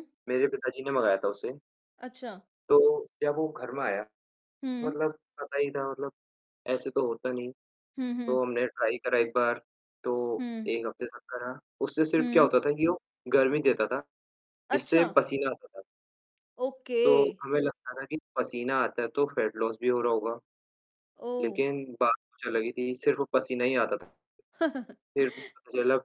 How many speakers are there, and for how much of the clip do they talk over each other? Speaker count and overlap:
2, about 7%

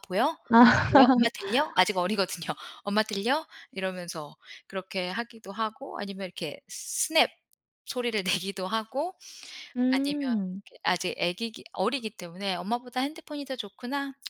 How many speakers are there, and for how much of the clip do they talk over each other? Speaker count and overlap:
2, about 6%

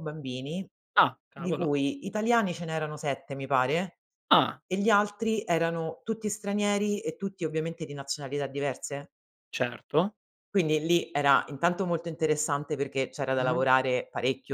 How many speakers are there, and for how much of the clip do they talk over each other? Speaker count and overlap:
2, about 4%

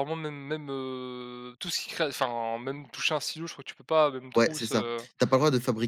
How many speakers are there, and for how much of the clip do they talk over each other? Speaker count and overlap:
2, about 12%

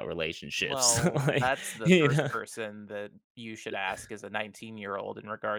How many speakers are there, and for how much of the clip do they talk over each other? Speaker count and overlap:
2, about 32%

